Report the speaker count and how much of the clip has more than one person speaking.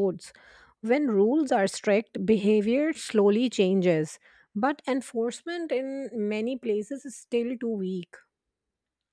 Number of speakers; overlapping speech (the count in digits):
1, no overlap